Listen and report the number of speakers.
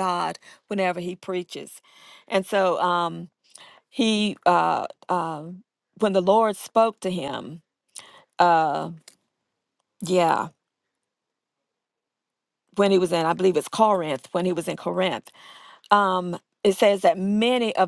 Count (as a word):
one